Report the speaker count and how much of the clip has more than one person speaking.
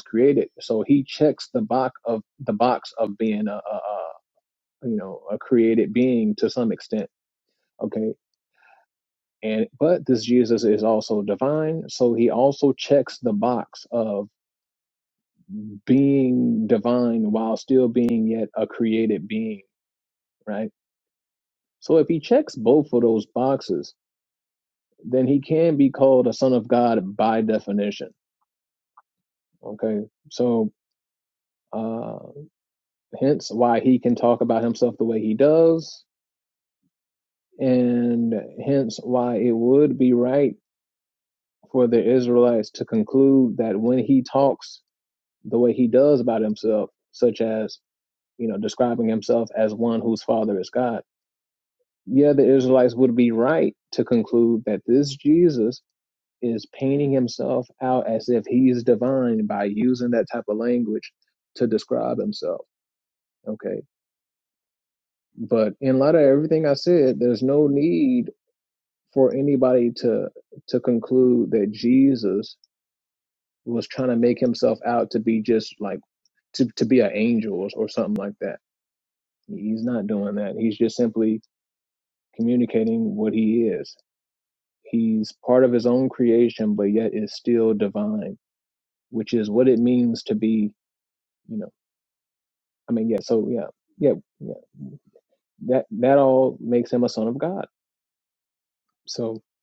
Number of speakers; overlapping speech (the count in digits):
1, no overlap